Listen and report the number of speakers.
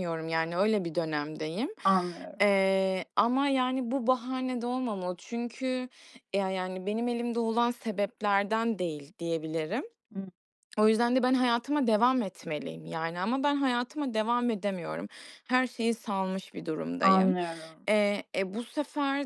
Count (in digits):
2